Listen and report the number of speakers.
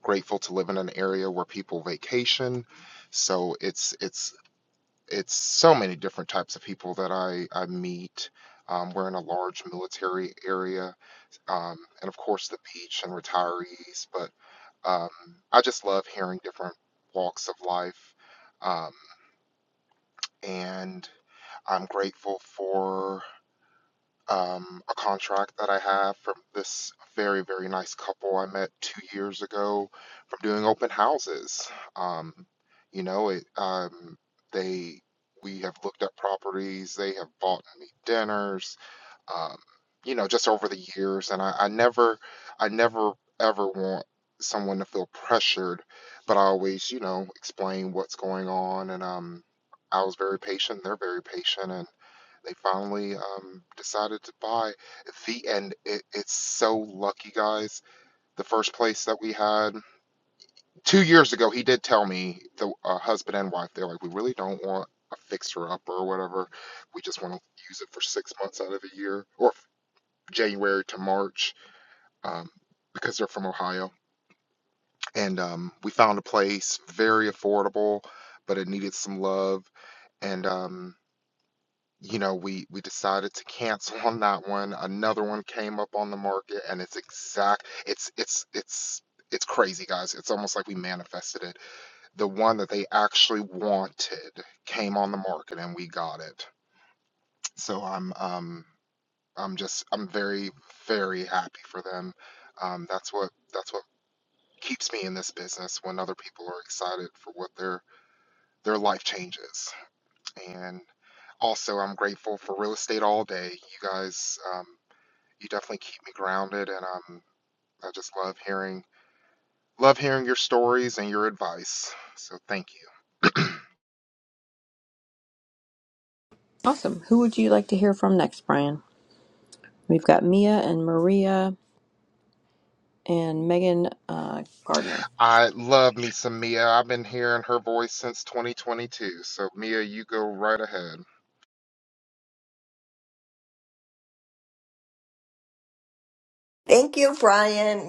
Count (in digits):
3